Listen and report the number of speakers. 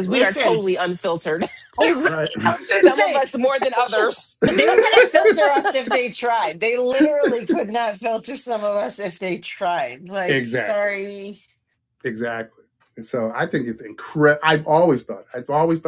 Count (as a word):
three